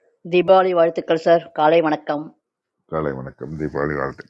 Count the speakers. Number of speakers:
2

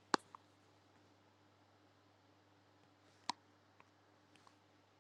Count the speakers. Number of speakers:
0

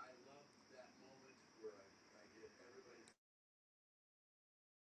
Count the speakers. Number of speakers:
0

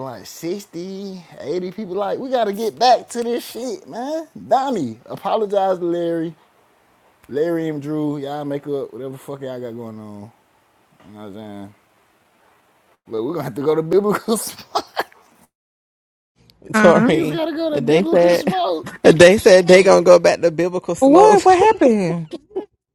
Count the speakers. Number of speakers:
3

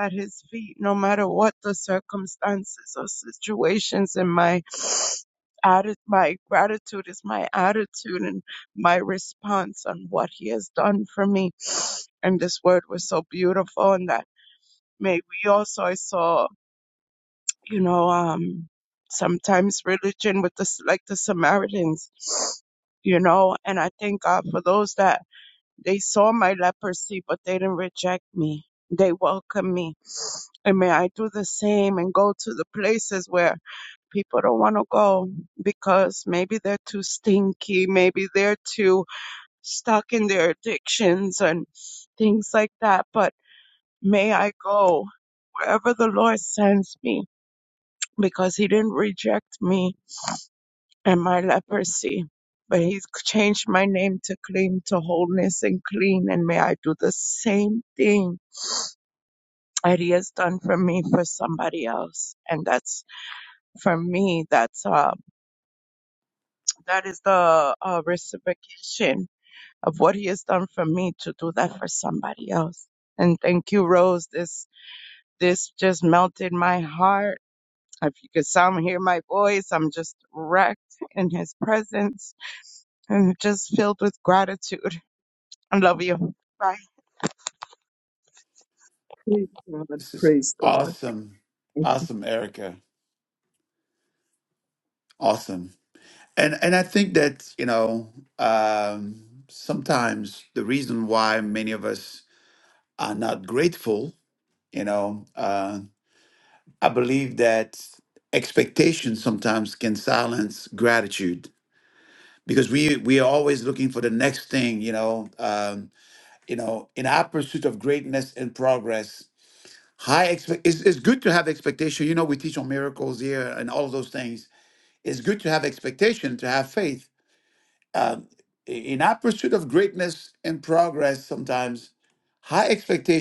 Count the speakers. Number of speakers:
3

